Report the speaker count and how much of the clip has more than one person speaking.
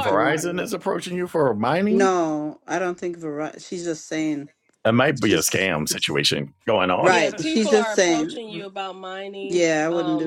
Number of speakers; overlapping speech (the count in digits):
3, about 29%